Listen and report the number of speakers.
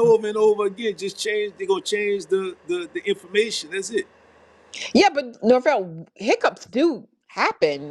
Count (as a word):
two